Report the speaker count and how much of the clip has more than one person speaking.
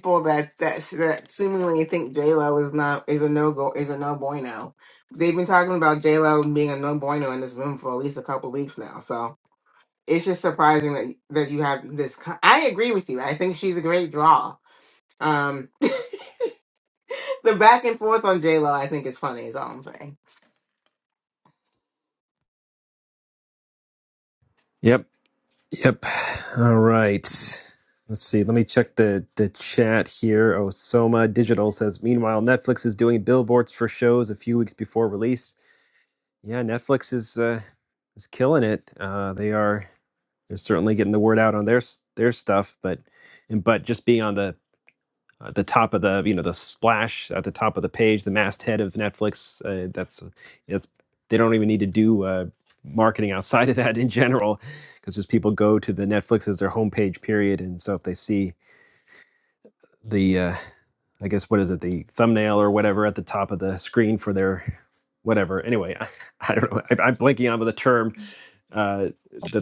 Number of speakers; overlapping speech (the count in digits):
2, no overlap